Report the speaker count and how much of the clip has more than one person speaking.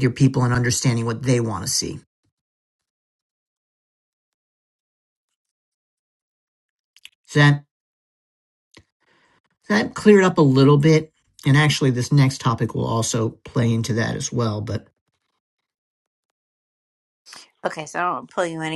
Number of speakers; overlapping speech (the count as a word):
two, no overlap